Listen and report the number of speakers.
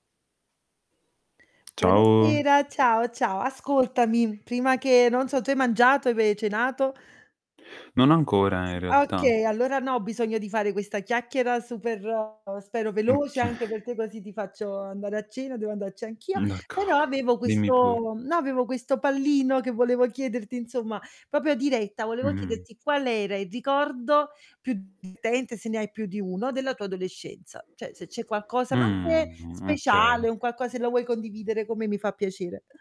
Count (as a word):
two